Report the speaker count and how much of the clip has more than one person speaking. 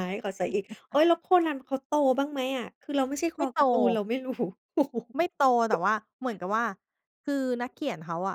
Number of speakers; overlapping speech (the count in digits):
2, about 3%